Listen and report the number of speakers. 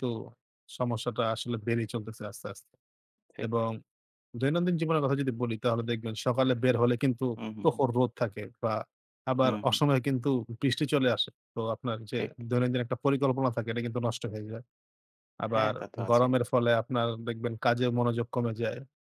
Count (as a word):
two